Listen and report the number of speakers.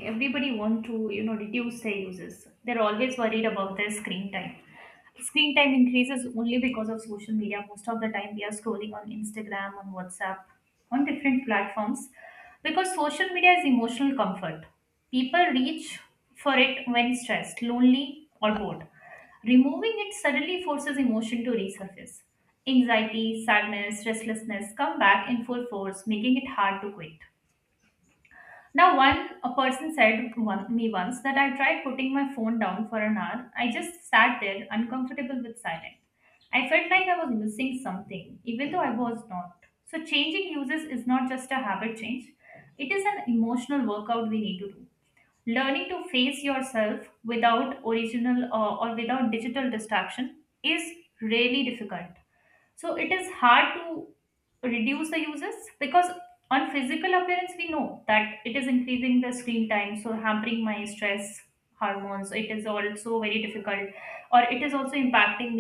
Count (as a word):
one